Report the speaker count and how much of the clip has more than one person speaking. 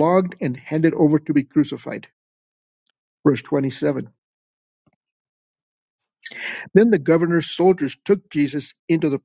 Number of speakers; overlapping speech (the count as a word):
one, no overlap